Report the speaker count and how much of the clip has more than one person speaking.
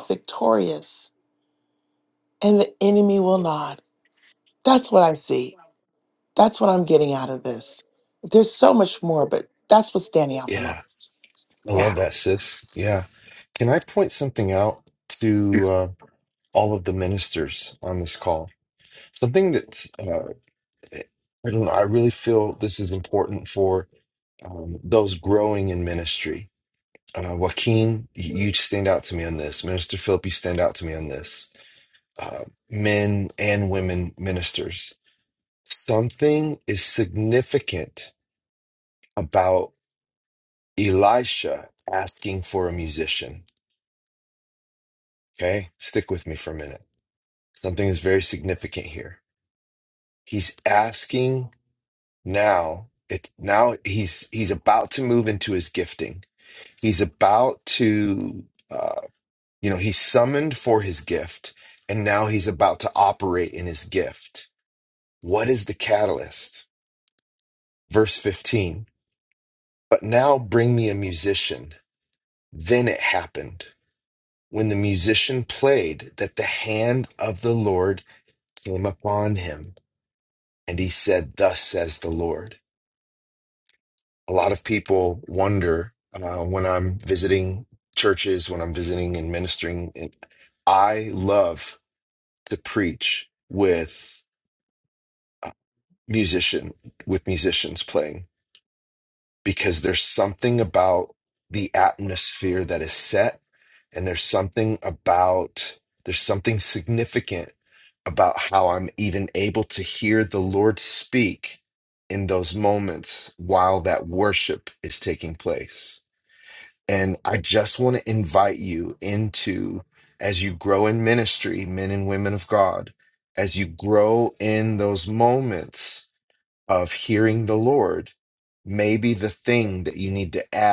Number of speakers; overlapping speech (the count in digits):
2, under 1%